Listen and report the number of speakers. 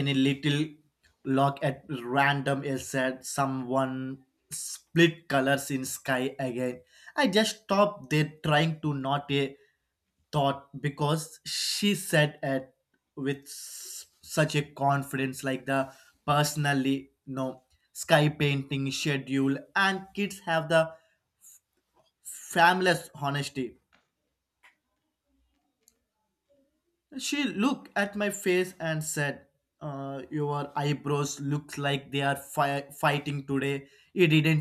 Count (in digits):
1